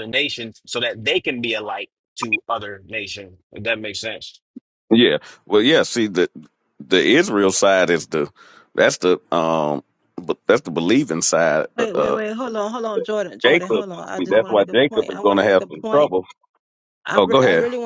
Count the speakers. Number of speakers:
3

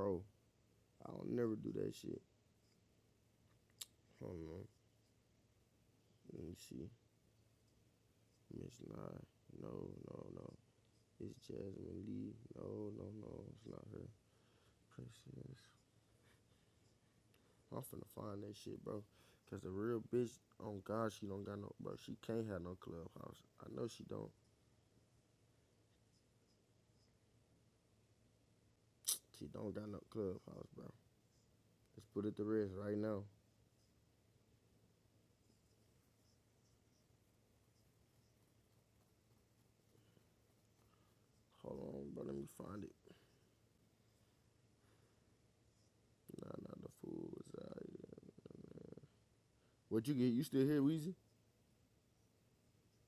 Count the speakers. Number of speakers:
1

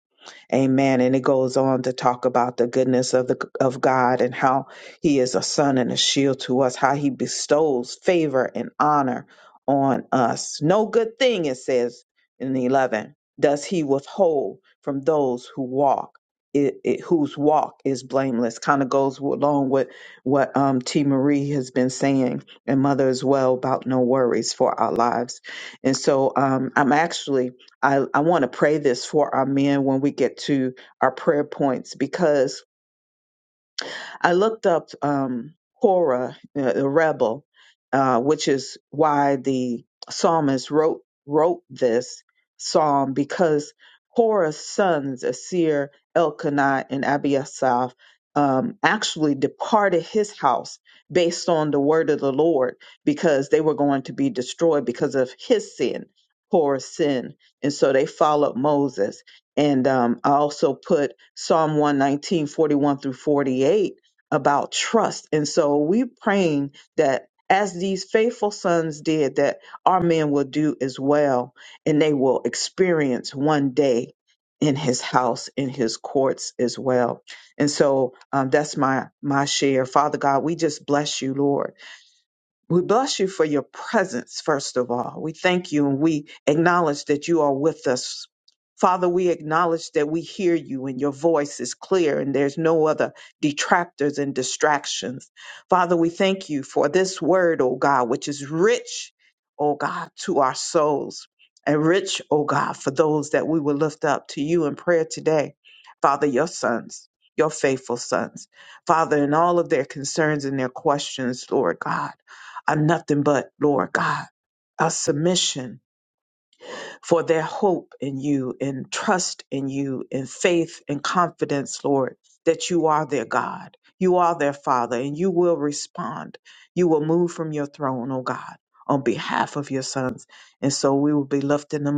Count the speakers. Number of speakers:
1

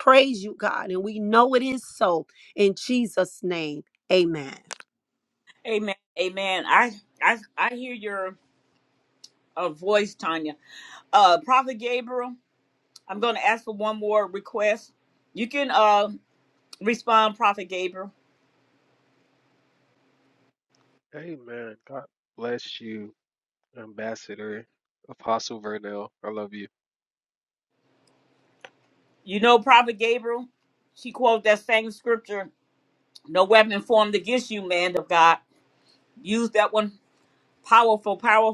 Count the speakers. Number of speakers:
3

